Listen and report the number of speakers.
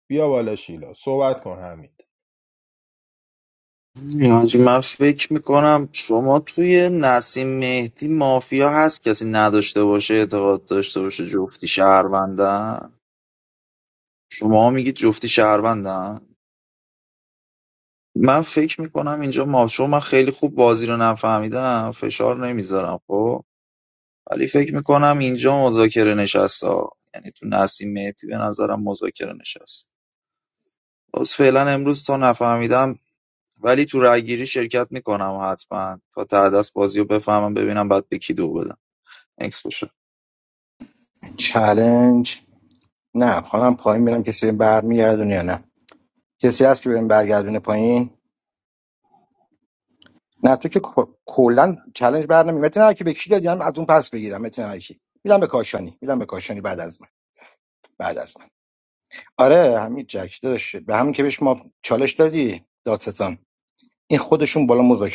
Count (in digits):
3